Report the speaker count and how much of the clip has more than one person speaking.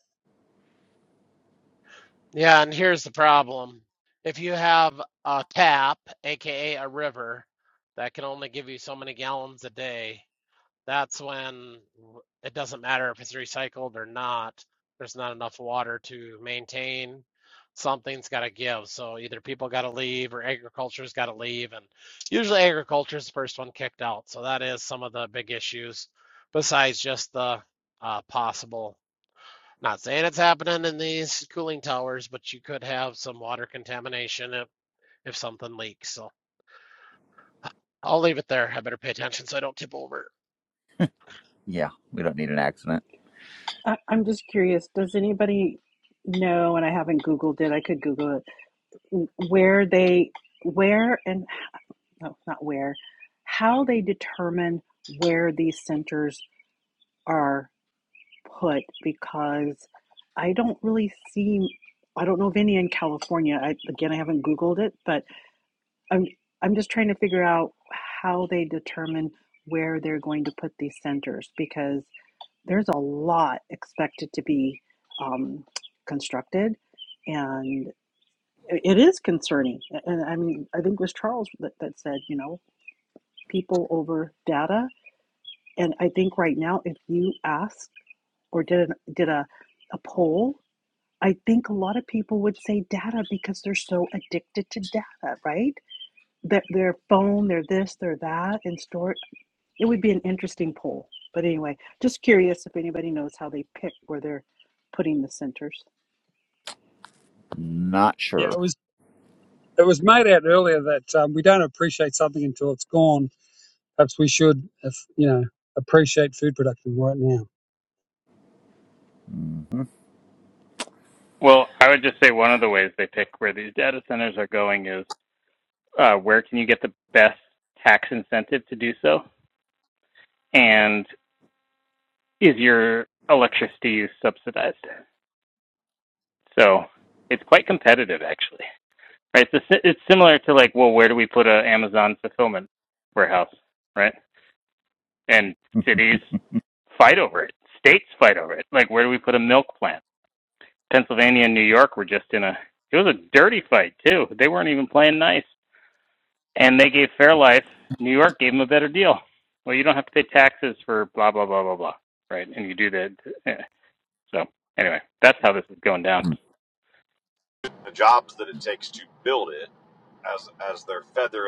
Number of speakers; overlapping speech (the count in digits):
6, under 1%